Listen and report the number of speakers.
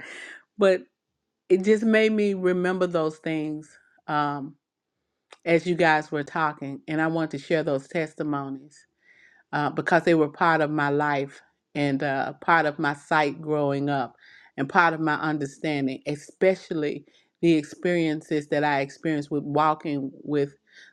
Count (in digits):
1